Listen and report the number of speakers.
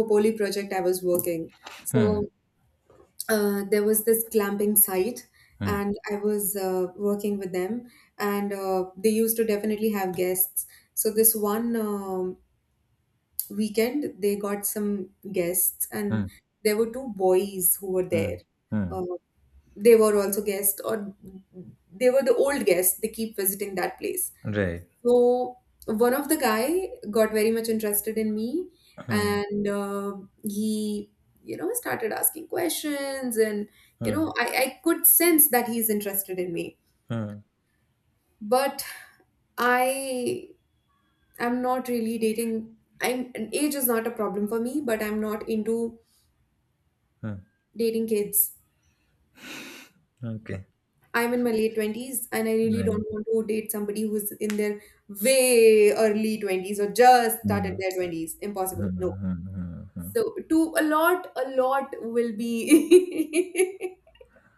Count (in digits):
2